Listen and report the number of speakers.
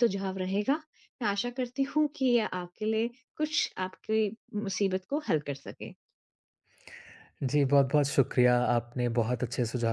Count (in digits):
2